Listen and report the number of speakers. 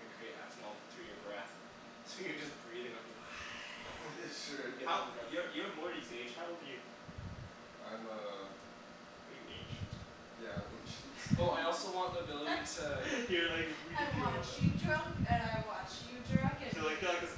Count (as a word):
four